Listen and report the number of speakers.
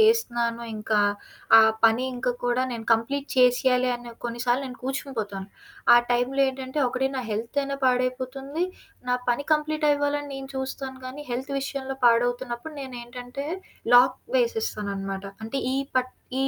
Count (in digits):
1